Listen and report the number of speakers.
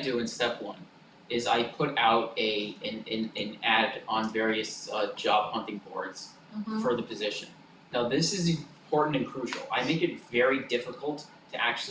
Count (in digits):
1